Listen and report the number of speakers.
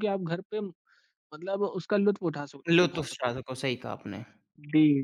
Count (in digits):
2